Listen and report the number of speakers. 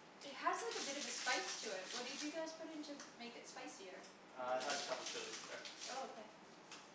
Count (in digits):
2